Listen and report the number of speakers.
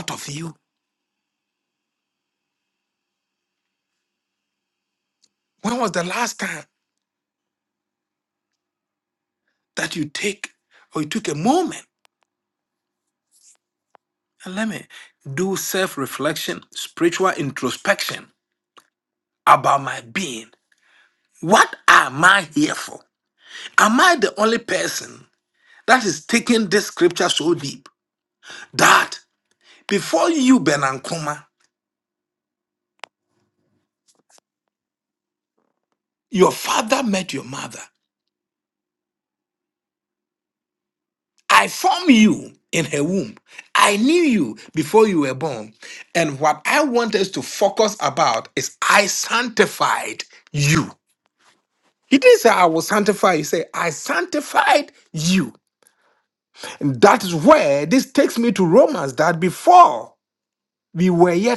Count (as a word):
one